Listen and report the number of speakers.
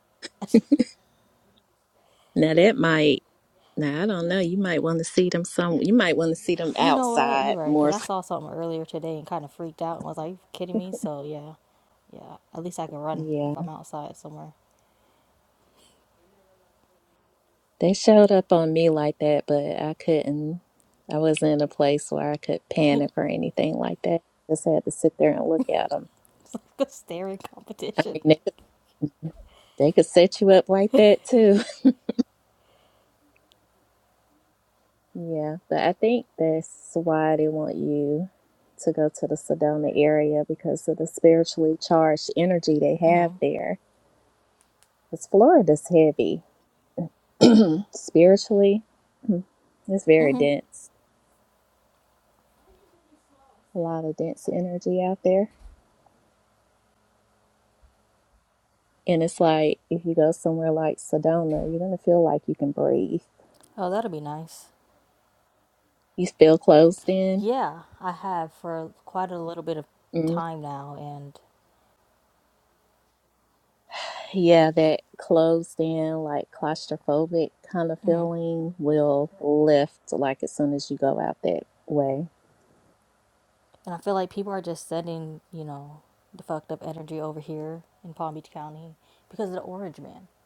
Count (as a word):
two